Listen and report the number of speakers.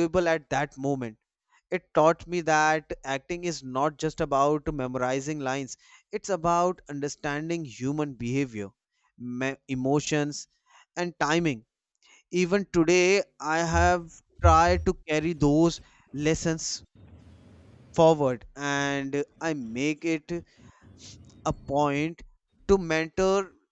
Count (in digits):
1